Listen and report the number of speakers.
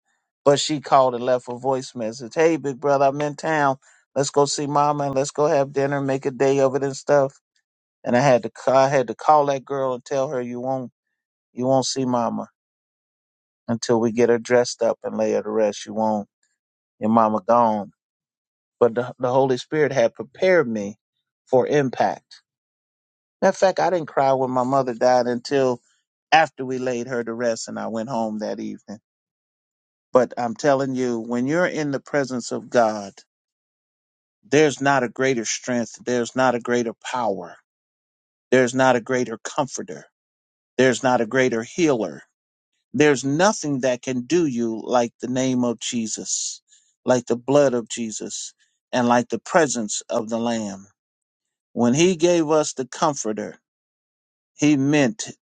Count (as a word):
one